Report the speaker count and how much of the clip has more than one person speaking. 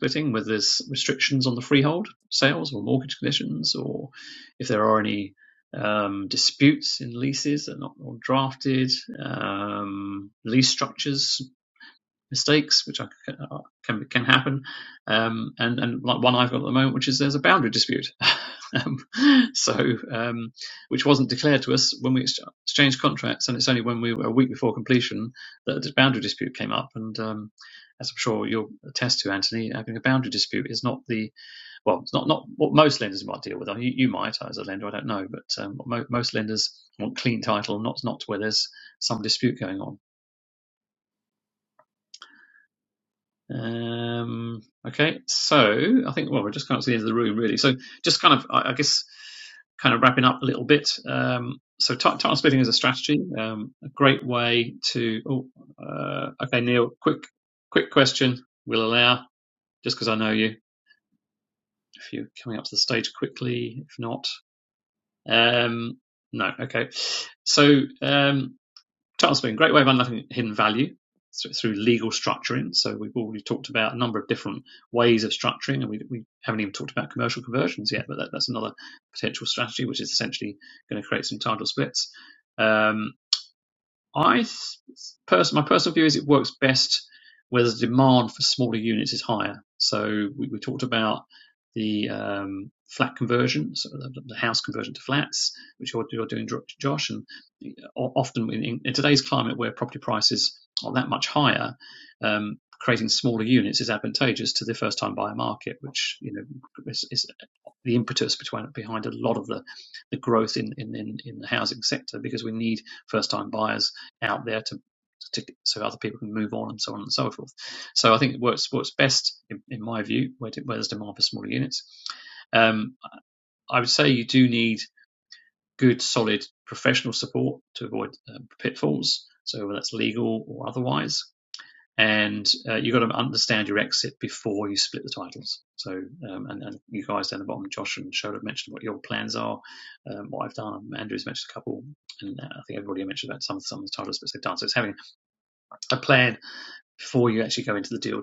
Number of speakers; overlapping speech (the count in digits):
1, no overlap